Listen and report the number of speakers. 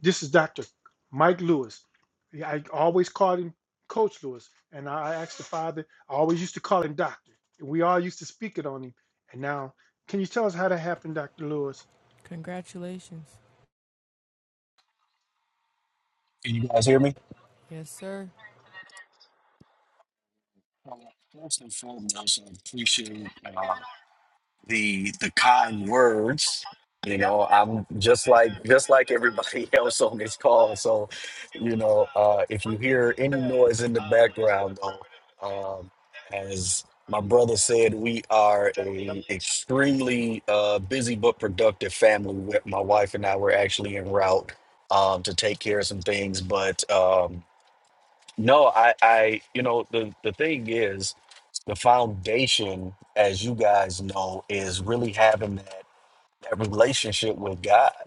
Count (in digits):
3